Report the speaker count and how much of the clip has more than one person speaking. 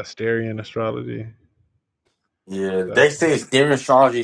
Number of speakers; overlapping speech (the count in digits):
2, about 9%